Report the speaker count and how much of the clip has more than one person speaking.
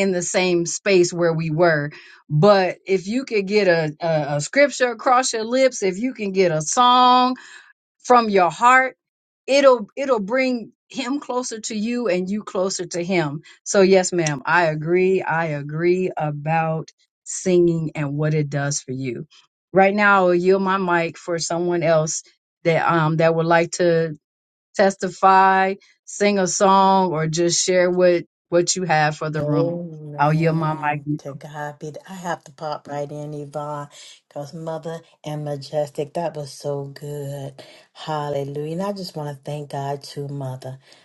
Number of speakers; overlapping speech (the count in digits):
2, about 2%